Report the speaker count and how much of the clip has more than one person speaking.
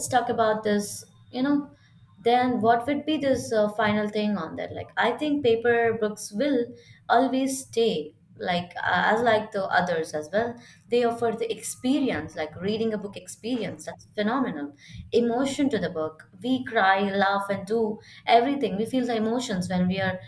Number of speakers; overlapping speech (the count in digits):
1, no overlap